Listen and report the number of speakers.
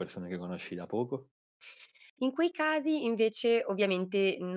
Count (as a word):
two